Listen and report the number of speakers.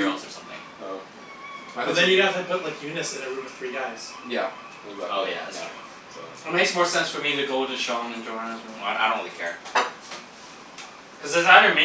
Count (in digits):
4